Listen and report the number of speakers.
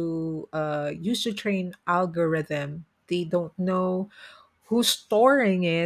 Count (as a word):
one